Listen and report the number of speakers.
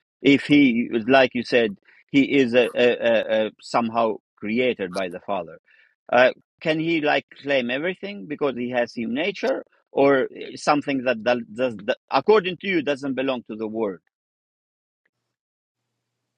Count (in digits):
1